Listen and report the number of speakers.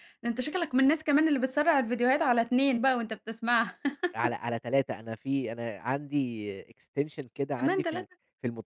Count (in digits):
2